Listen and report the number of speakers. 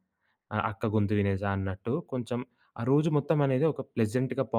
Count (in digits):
1